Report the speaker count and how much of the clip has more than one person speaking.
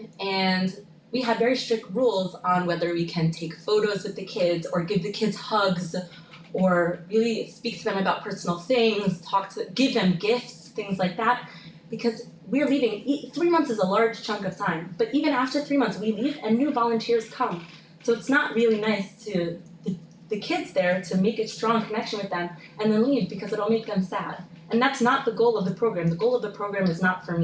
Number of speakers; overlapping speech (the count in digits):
1, no overlap